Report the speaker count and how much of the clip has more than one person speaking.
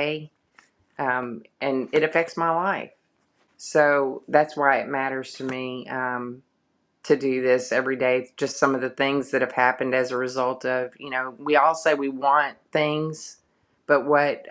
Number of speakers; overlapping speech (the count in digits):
1, no overlap